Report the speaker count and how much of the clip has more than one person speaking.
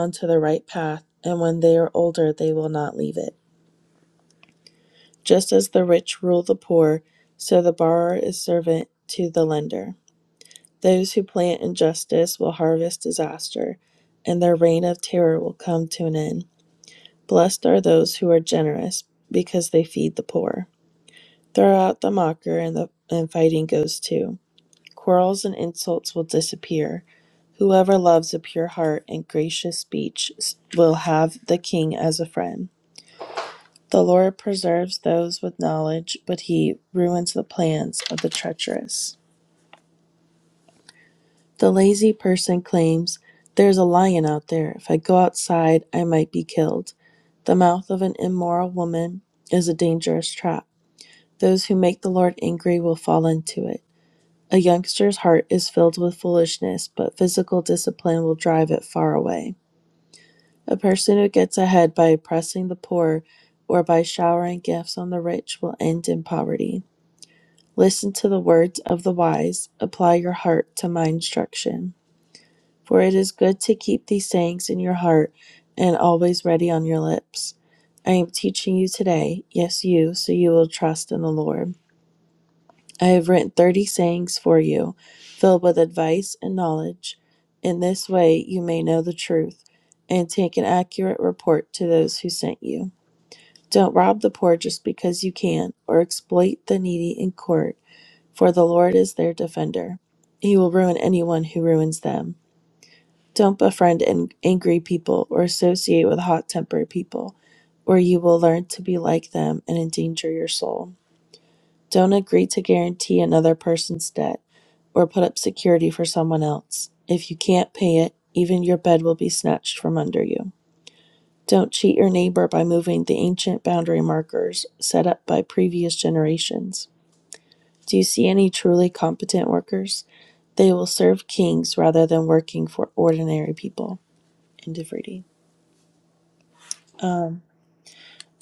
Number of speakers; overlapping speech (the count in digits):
1, no overlap